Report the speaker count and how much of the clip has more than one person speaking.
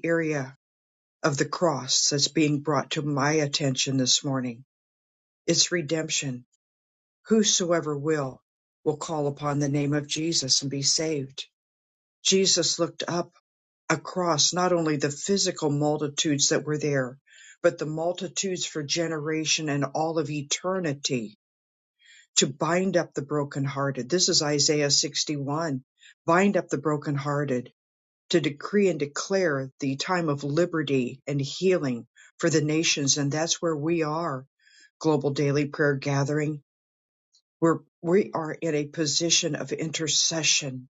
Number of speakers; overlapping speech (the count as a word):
one, no overlap